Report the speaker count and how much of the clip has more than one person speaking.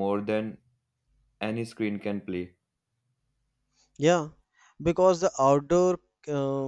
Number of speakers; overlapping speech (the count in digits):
2, no overlap